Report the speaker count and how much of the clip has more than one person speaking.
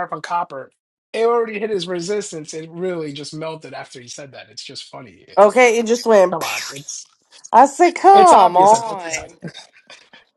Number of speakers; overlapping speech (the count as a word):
two, about 12%